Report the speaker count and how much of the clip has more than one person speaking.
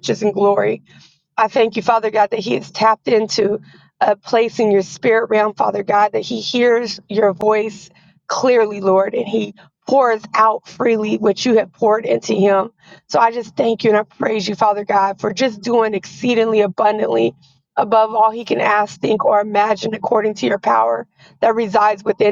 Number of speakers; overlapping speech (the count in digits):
1, no overlap